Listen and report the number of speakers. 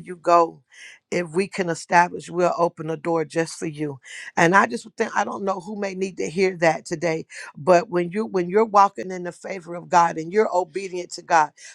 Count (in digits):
1